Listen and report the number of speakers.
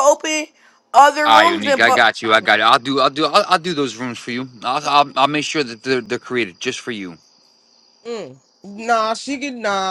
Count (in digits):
3